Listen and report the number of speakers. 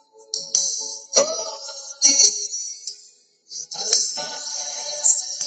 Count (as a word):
zero